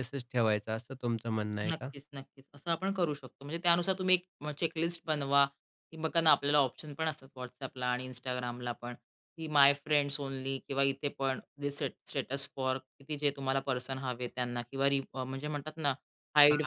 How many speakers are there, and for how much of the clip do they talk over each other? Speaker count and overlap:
2, about 3%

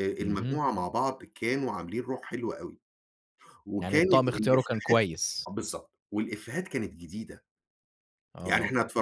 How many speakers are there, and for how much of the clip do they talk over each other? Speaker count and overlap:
2, about 19%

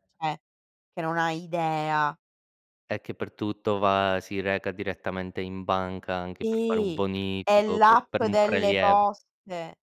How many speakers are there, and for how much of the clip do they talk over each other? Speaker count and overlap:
2, about 18%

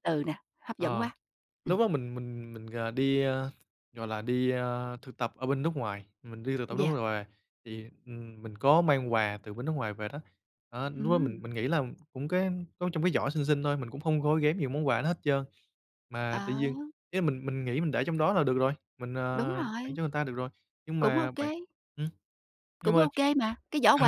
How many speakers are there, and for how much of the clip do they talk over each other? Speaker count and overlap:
2, about 11%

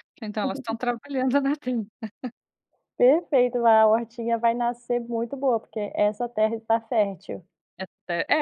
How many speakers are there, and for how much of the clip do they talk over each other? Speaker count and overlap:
2, no overlap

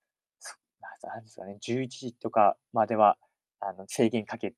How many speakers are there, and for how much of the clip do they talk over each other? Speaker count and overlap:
1, no overlap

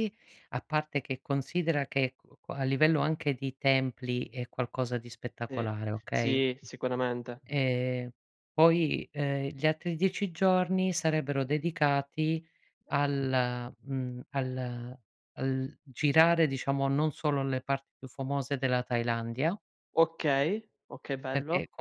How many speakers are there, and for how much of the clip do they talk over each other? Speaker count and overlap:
2, about 3%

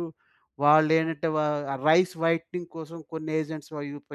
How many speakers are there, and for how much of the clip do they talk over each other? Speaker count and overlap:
1, no overlap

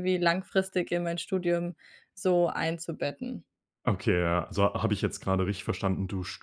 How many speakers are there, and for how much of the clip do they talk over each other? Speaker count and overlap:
2, no overlap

